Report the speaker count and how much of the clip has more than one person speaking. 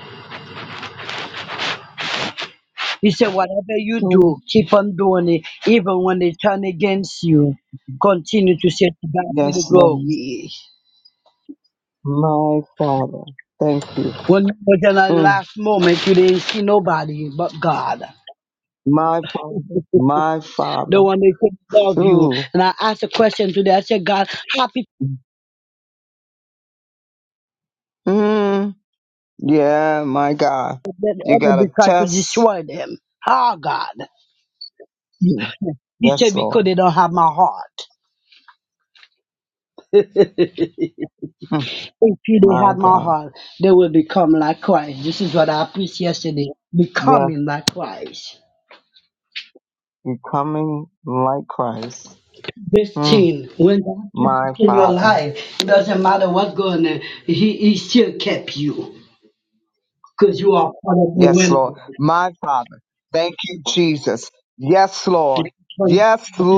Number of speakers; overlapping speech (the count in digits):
2, about 10%